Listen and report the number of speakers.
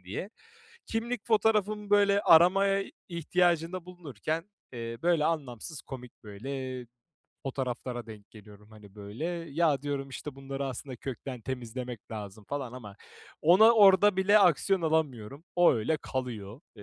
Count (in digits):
1